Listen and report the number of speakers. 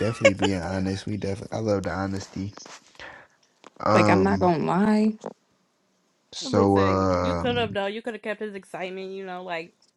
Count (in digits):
3